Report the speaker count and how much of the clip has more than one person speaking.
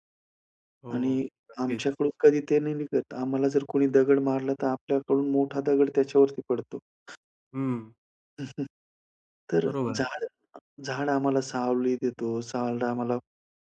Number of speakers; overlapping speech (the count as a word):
two, about 9%